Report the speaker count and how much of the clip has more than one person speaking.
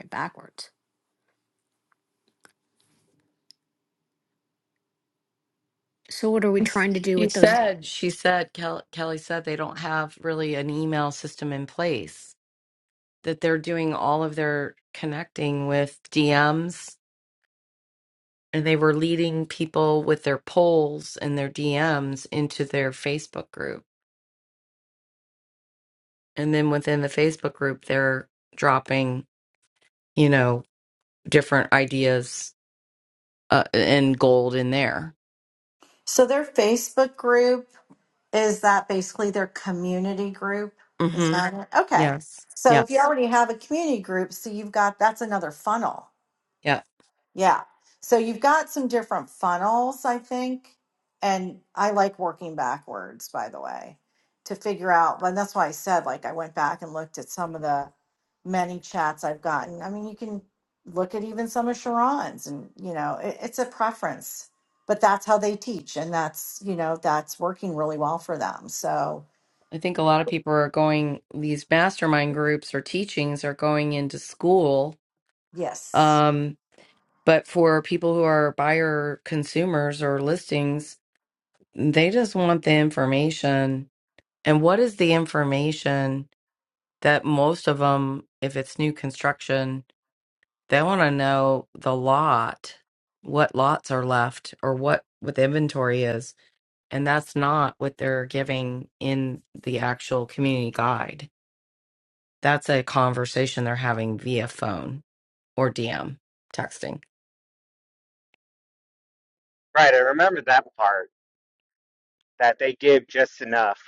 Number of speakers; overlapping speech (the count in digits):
4, about 1%